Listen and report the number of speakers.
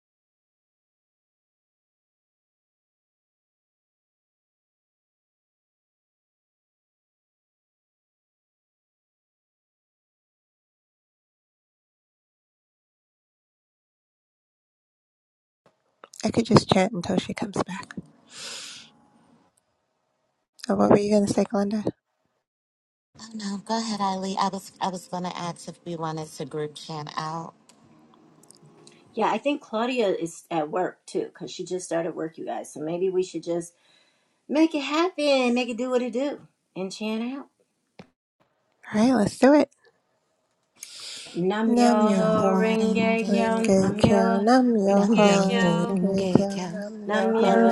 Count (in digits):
3